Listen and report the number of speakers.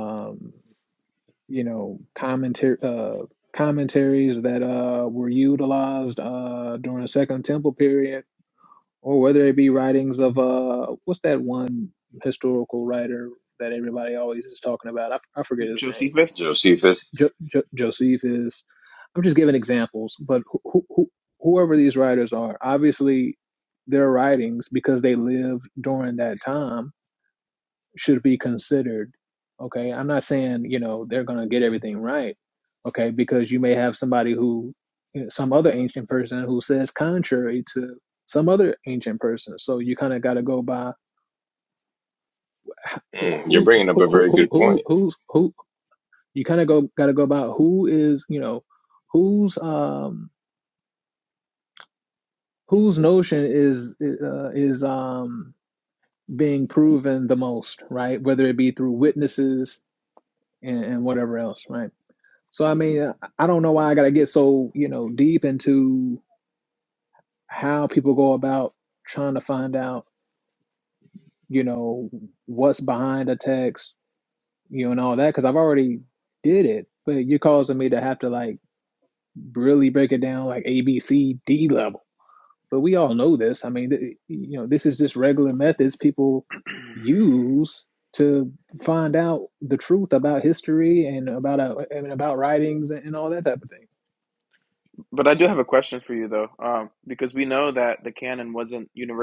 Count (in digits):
3